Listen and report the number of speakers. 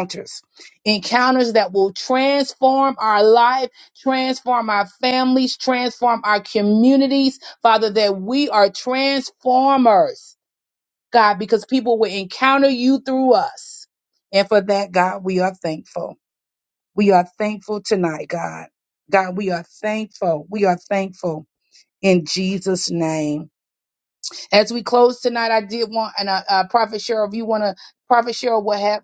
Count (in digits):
1